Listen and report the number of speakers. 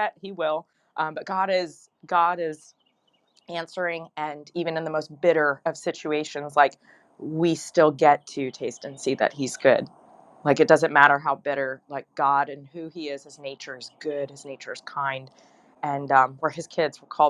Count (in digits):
1